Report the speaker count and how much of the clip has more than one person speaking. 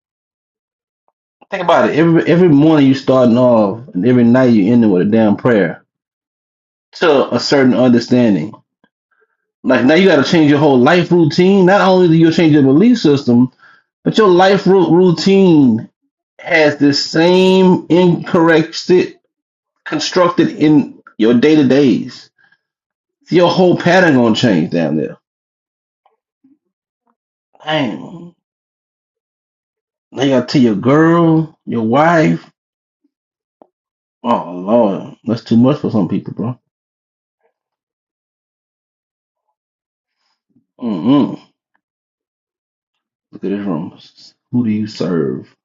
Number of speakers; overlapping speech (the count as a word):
one, no overlap